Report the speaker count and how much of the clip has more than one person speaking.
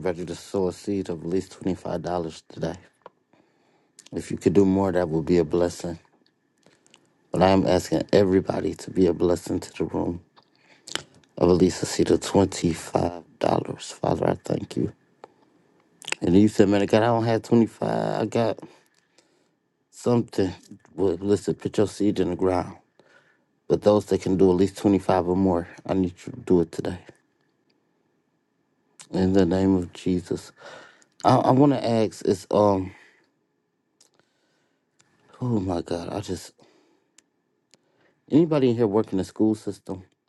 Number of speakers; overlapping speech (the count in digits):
1, no overlap